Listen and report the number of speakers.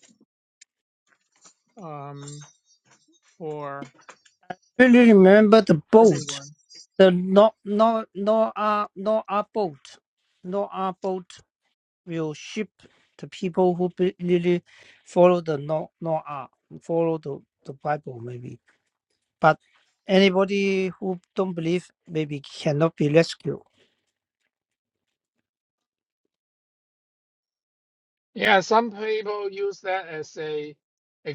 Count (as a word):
three